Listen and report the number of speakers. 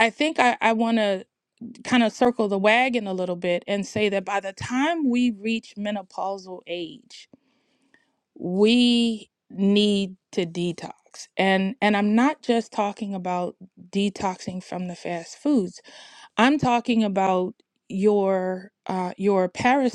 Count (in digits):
1